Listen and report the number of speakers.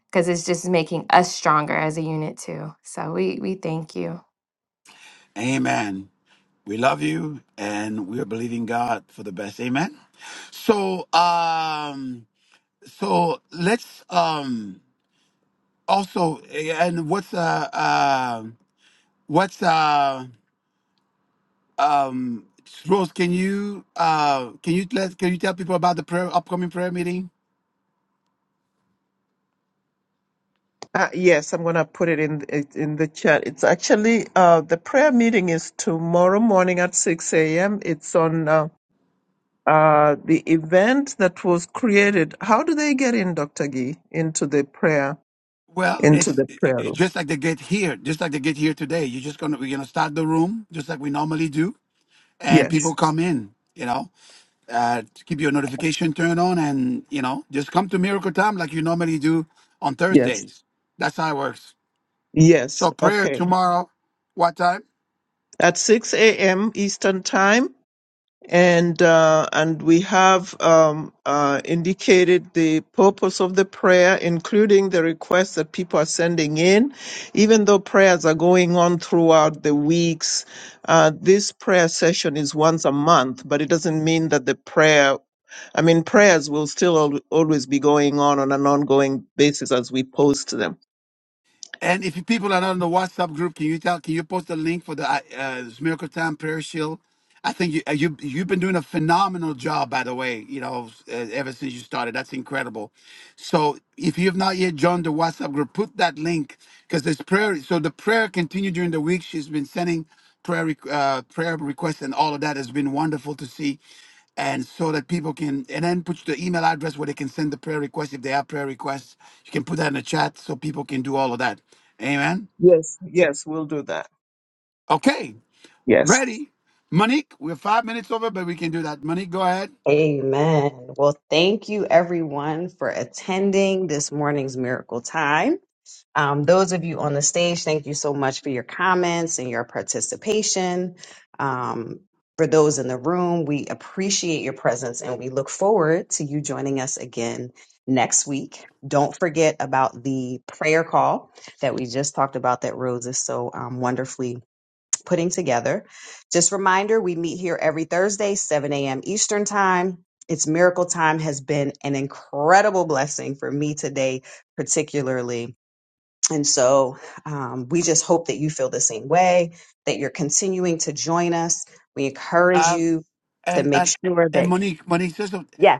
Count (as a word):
four